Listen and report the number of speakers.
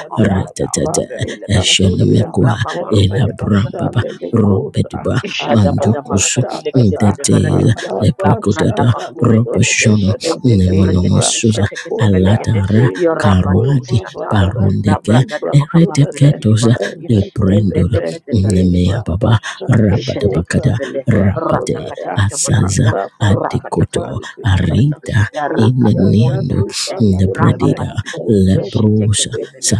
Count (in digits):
3